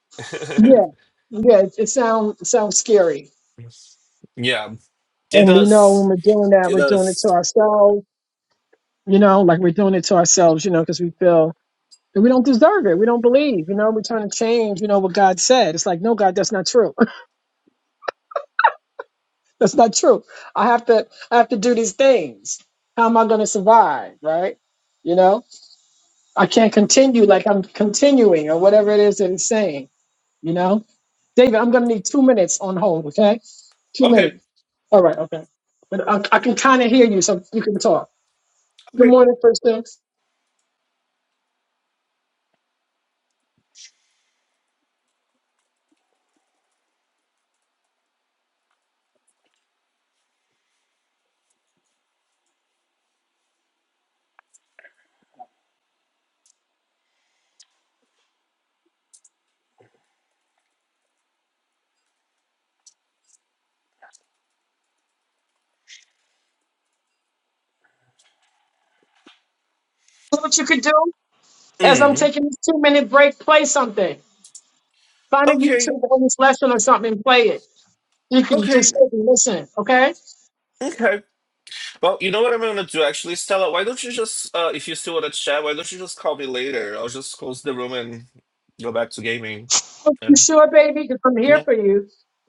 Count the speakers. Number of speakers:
two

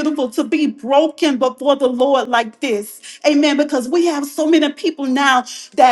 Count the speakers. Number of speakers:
one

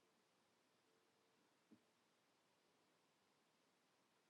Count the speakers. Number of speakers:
zero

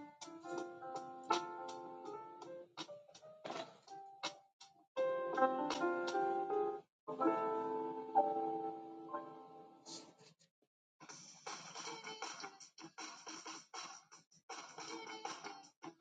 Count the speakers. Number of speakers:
zero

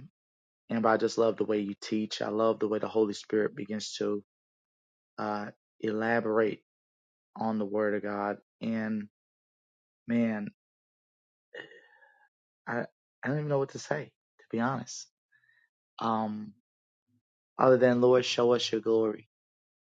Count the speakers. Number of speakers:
one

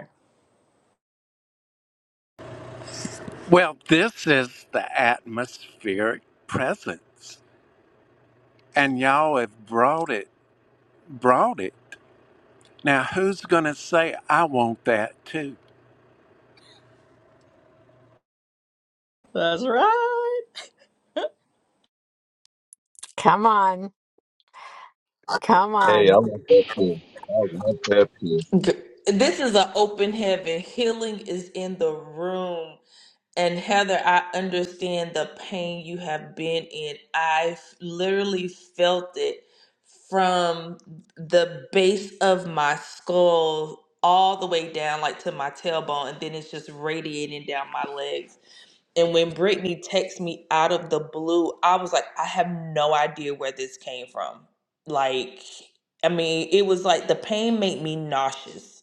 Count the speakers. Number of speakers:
five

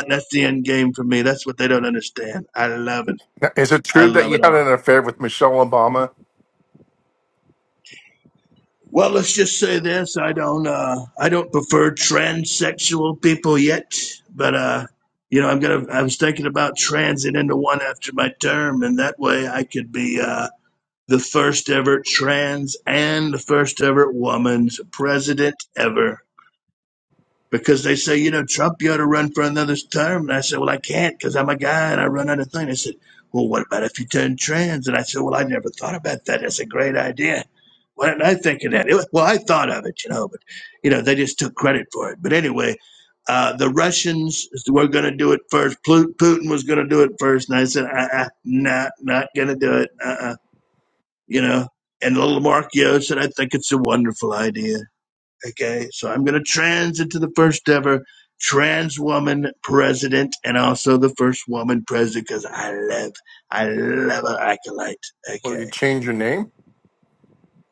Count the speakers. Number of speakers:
two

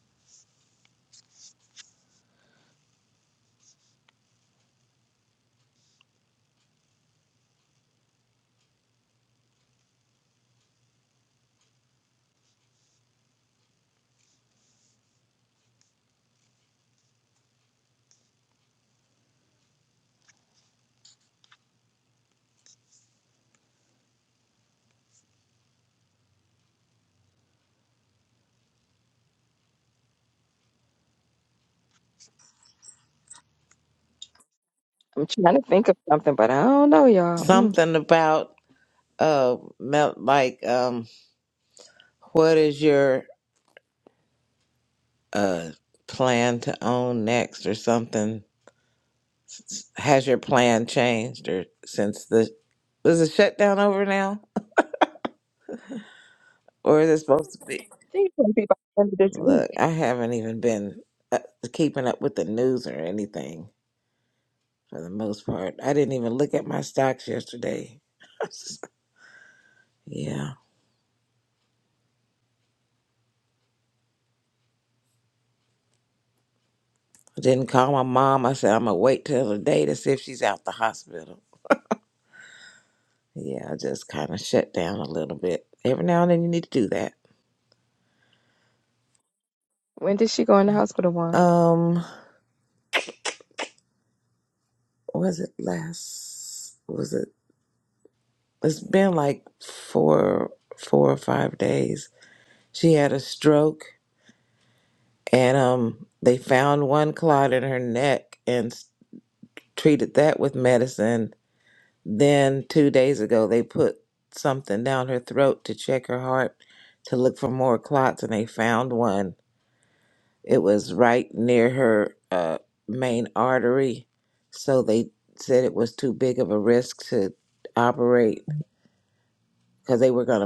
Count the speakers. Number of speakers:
two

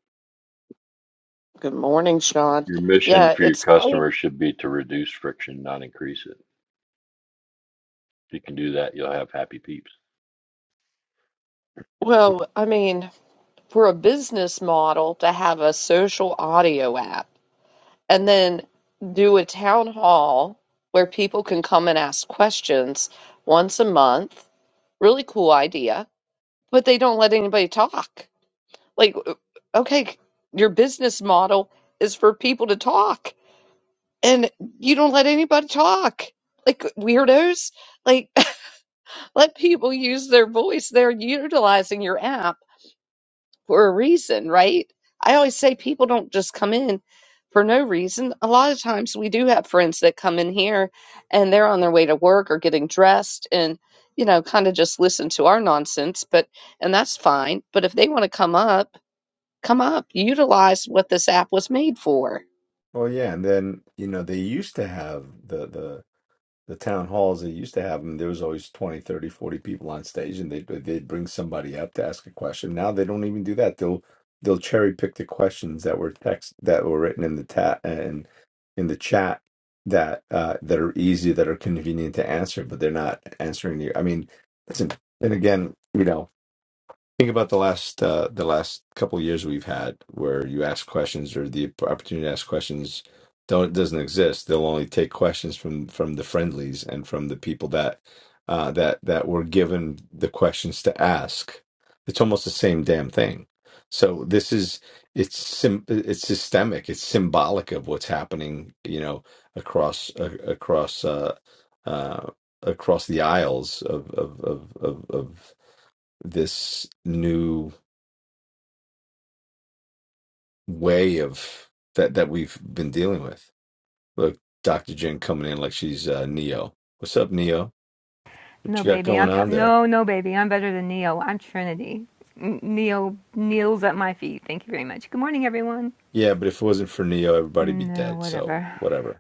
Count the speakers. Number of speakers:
four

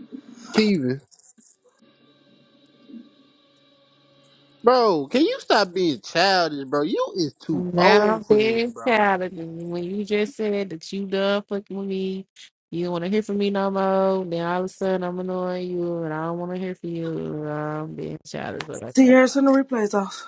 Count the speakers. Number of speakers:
three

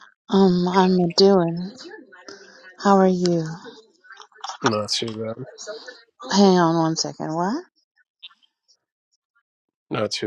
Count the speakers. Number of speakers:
two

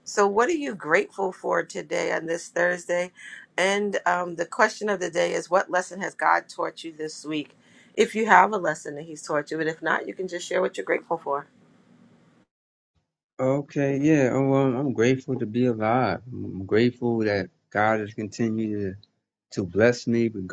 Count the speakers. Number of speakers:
two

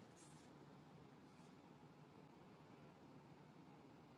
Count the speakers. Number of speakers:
zero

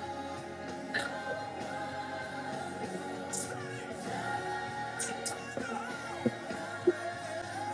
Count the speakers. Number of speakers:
zero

